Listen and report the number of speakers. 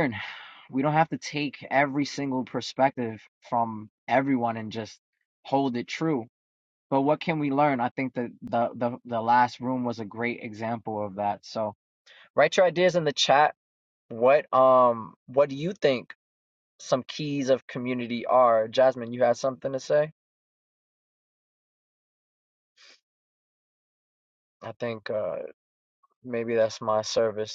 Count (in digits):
1